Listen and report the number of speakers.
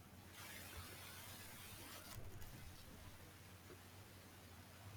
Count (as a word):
zero